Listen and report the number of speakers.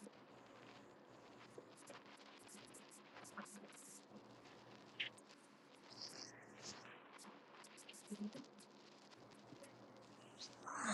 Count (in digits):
0